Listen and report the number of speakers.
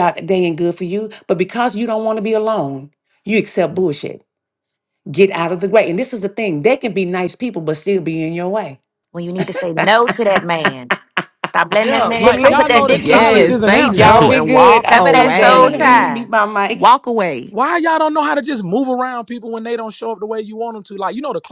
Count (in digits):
4